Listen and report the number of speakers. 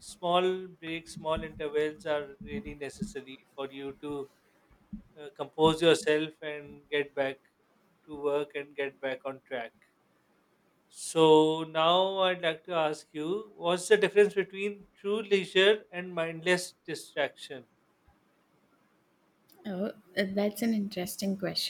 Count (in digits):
2